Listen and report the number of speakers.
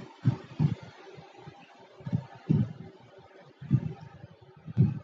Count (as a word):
zero